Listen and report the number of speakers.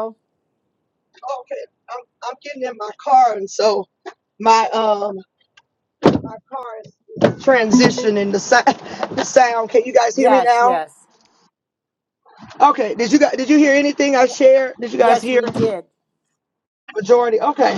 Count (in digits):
2